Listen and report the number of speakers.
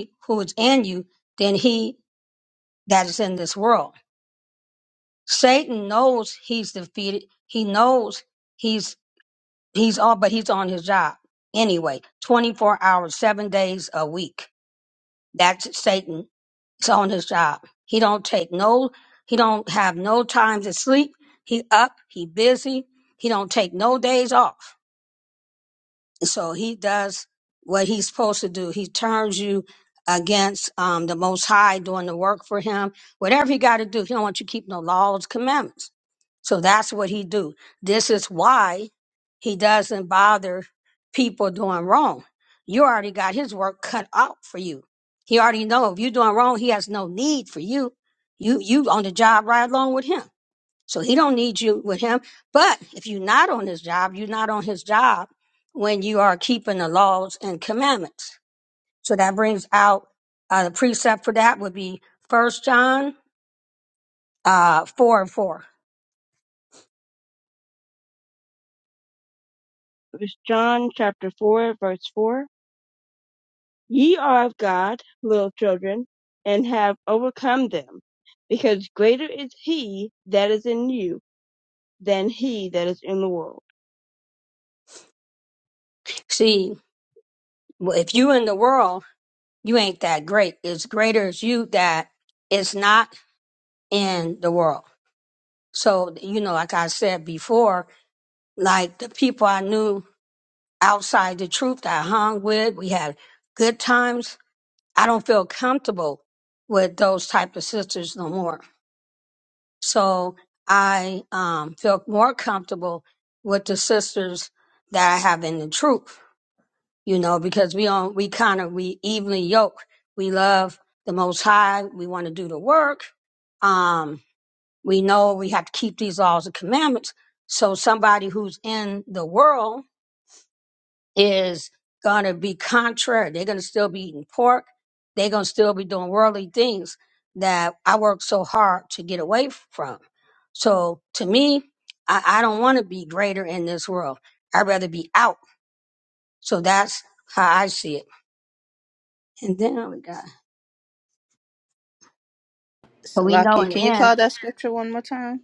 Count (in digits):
3